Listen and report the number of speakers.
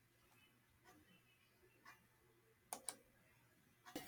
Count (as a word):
zero